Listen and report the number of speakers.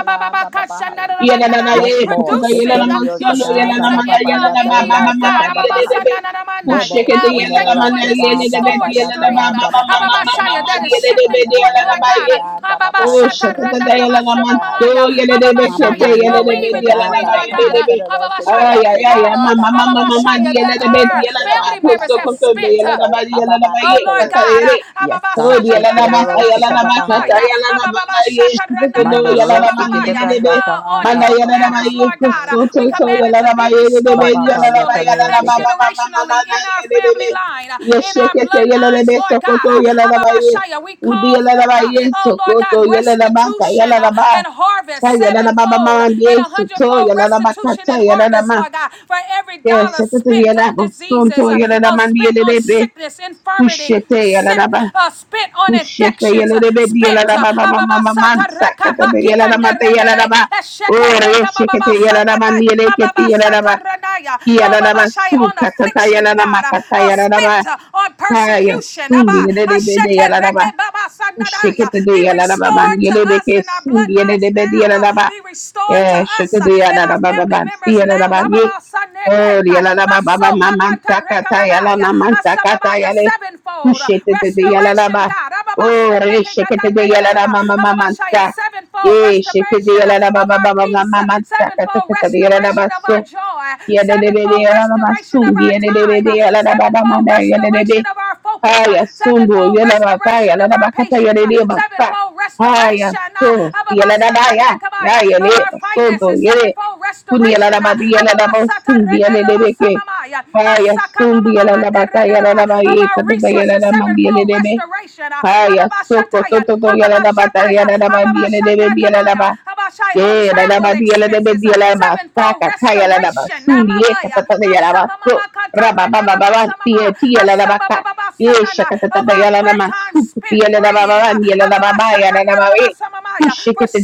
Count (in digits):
3